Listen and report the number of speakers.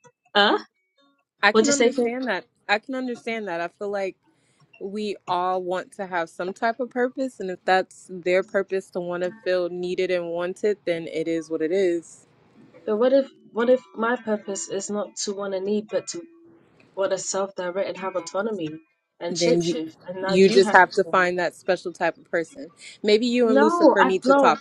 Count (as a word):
two